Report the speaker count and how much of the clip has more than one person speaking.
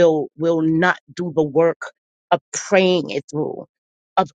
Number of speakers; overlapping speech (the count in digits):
1, no overlap